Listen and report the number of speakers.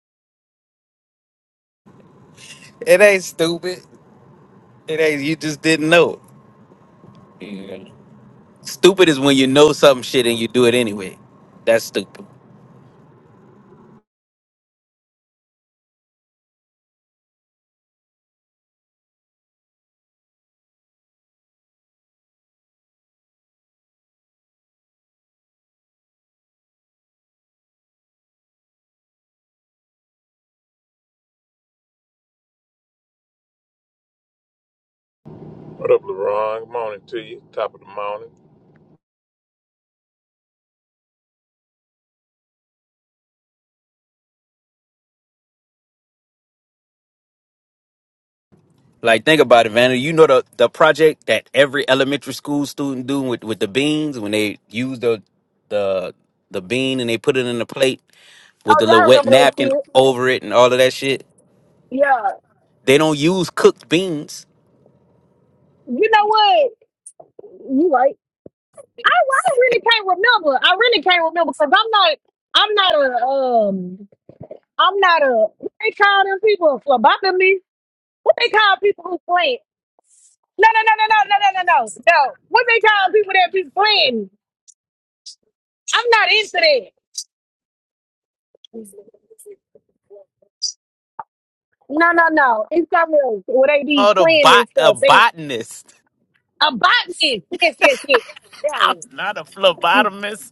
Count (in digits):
3